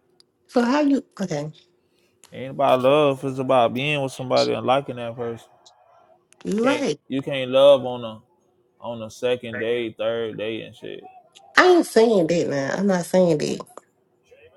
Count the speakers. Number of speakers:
2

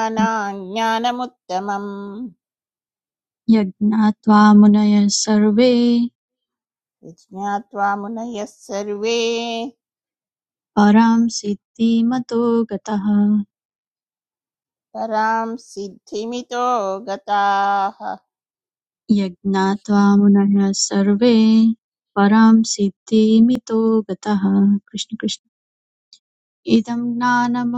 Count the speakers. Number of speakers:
2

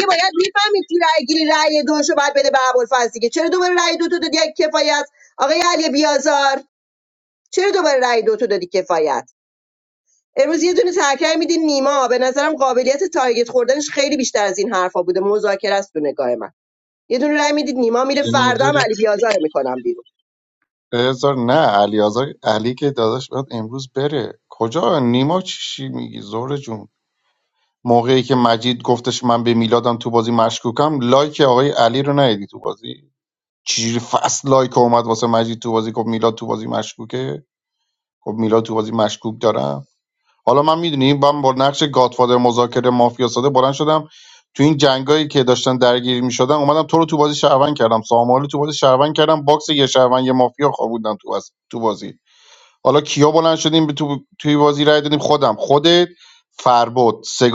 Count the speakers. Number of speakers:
2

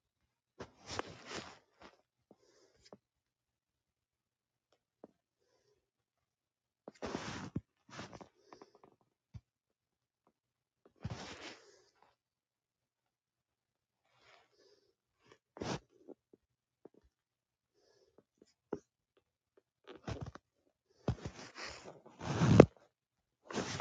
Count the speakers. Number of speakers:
0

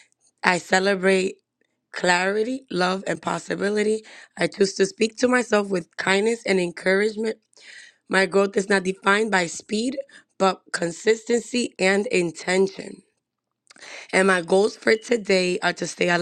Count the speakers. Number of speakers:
1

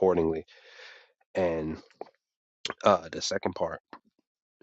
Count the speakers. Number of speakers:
1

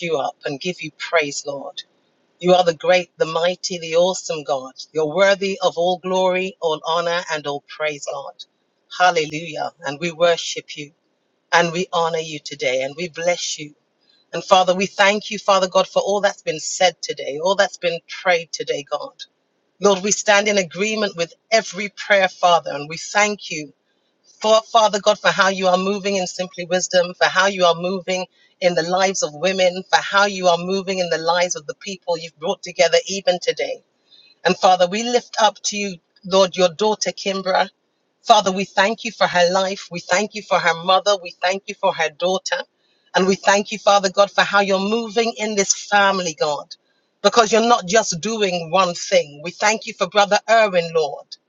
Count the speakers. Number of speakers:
1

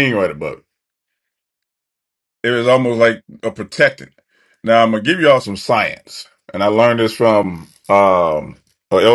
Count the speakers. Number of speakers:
1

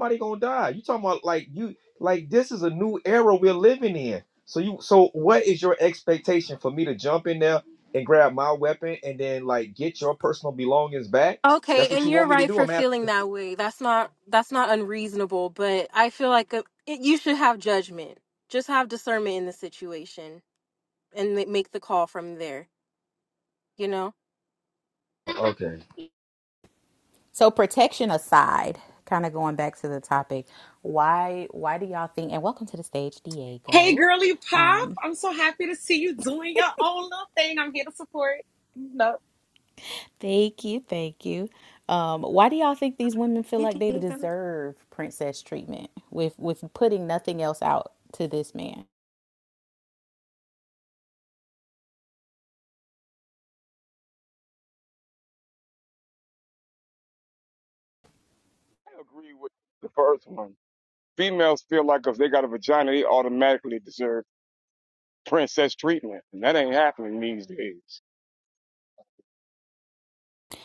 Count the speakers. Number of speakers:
5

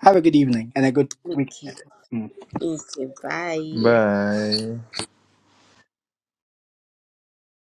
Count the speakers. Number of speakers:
3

